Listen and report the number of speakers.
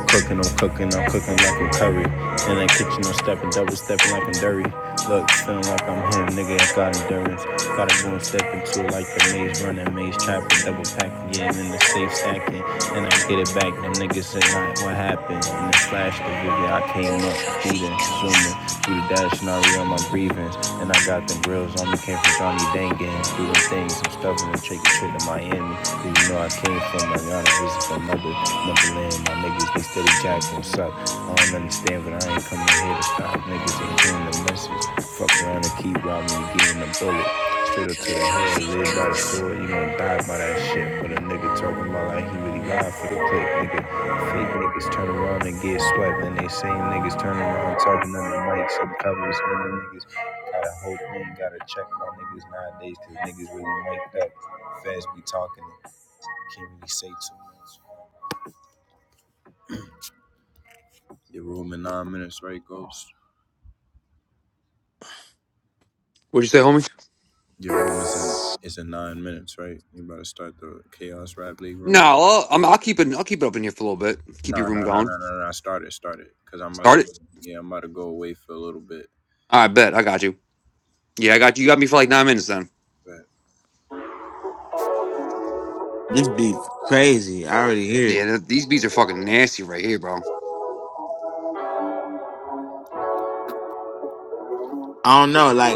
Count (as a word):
three